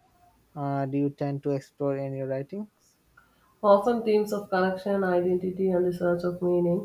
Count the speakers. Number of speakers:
2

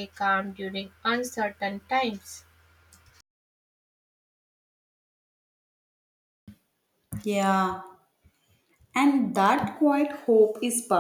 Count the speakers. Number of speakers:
2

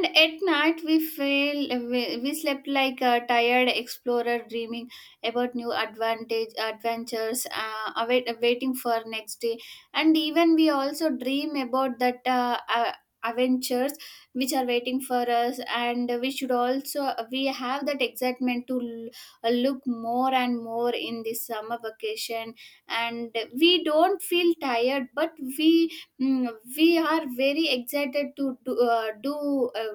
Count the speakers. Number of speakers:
1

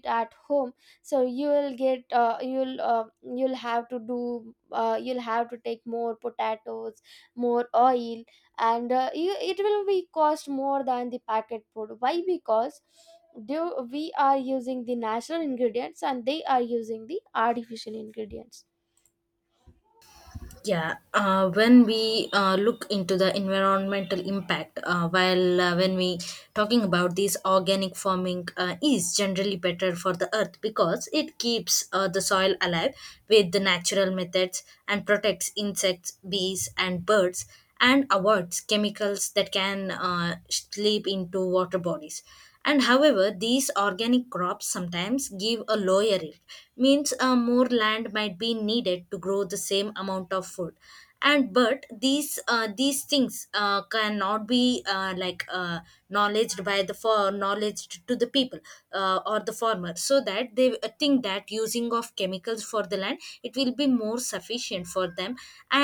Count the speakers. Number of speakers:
2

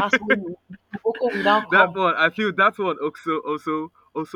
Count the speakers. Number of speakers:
2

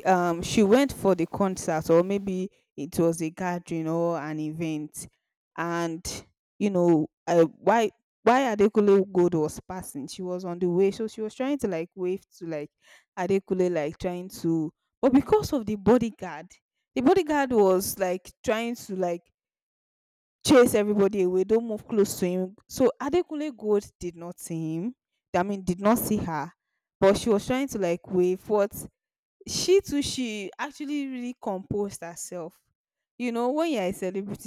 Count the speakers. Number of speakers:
1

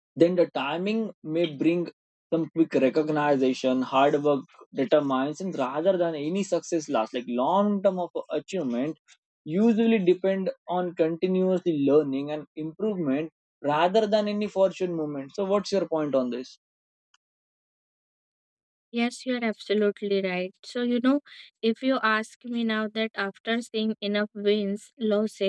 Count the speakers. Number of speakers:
2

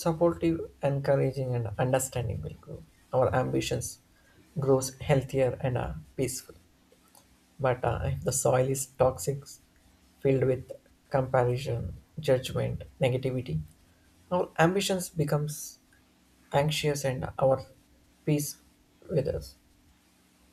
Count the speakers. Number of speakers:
1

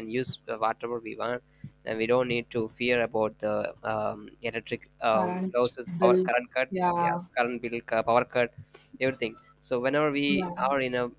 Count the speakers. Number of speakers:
2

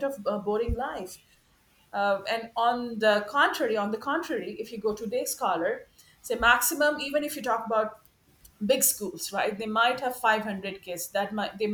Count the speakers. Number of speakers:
1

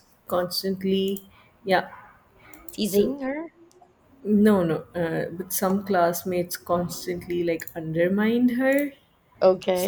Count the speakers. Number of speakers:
2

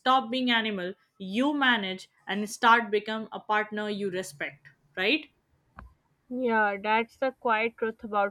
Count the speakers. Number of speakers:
2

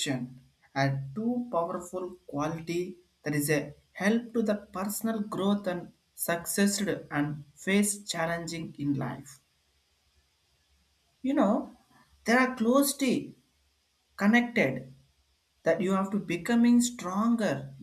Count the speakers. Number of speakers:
1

